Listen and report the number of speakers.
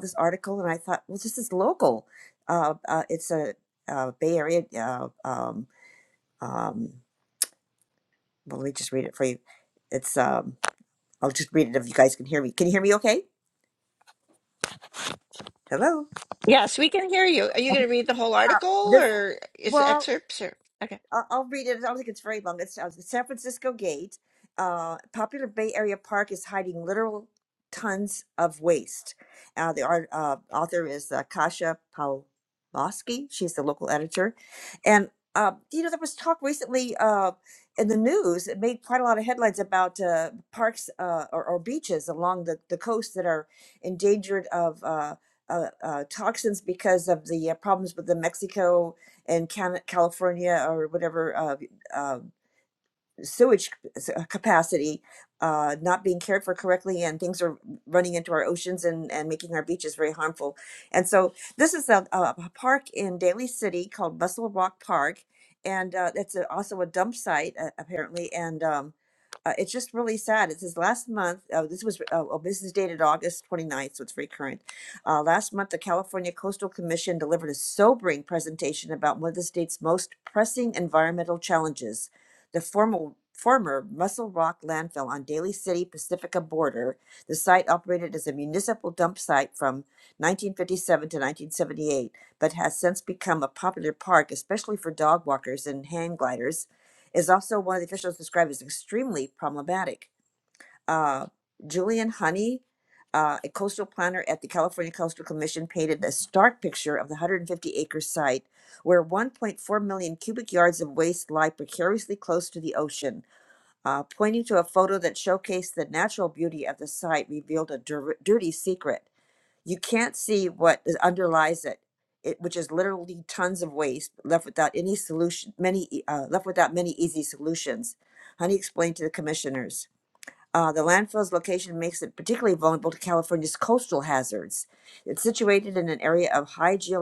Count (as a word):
two